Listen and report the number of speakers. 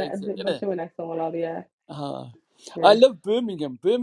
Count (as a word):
two